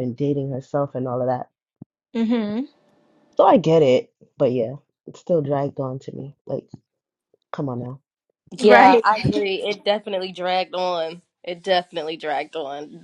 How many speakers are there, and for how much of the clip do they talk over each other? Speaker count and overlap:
3, about 4%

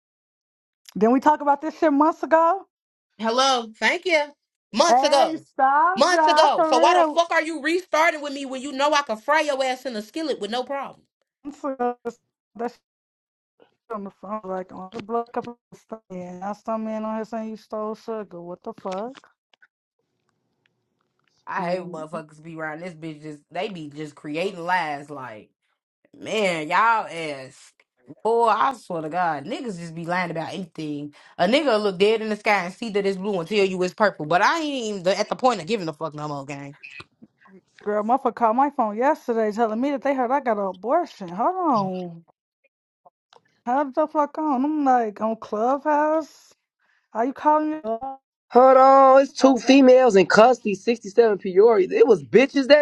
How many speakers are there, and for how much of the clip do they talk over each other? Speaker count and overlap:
3, about 5%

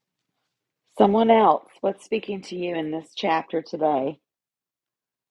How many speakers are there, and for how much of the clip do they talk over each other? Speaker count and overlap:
1, no overlap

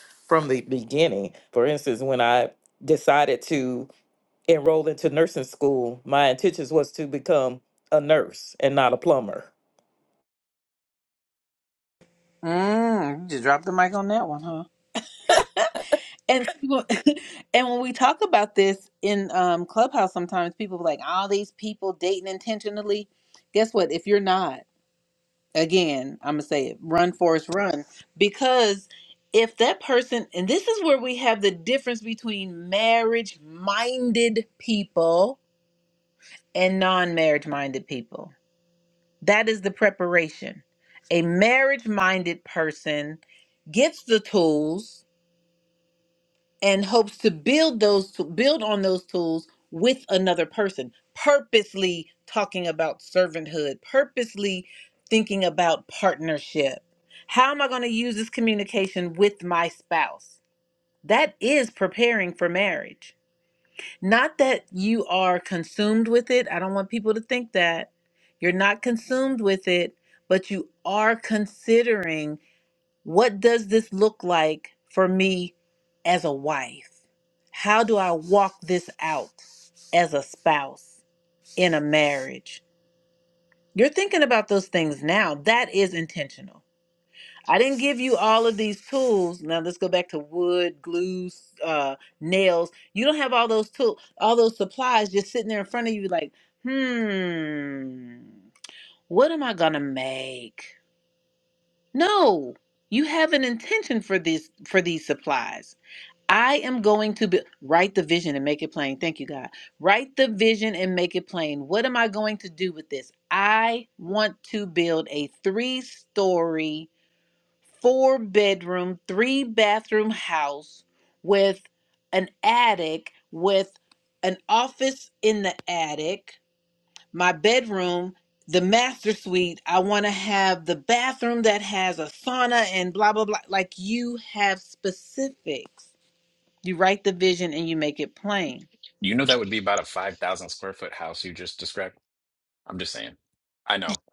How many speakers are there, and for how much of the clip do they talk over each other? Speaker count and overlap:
3, no overlap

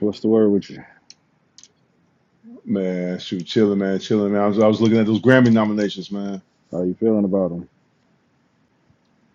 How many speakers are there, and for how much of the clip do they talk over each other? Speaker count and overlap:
2, no overlap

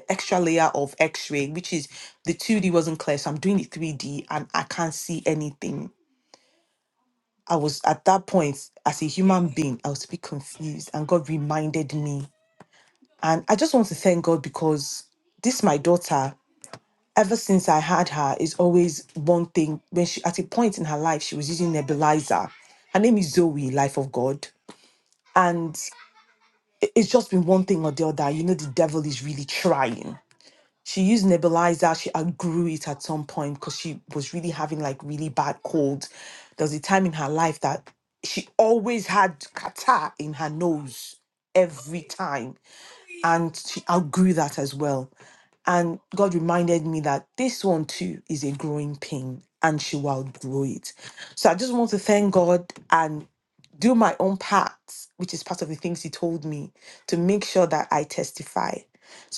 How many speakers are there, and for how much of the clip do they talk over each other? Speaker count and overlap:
1, no overlap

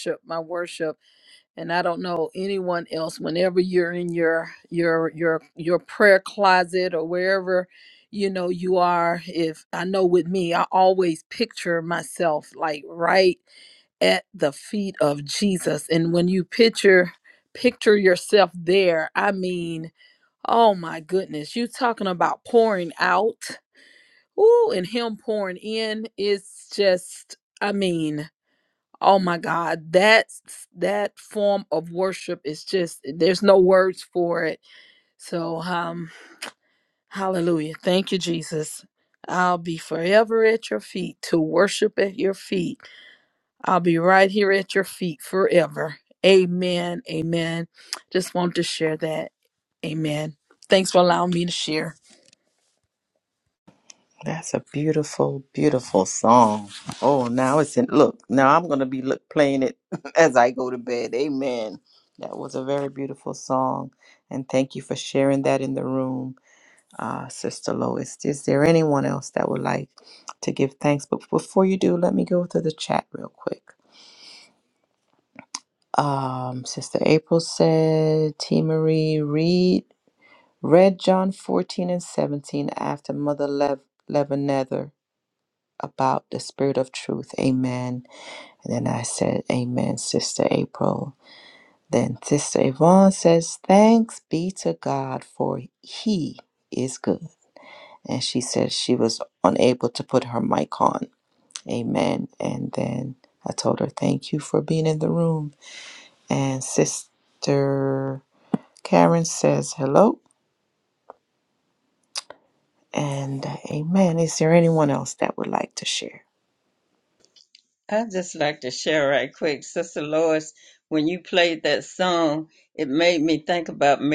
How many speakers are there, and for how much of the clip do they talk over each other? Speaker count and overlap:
3, no overlap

